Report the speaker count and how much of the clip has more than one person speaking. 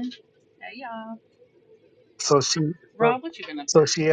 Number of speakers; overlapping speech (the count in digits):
2, about 7%